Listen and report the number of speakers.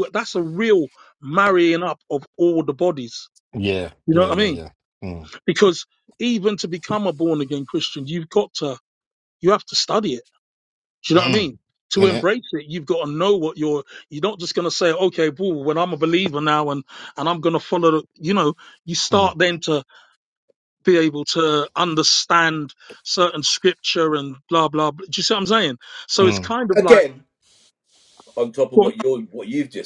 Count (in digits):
3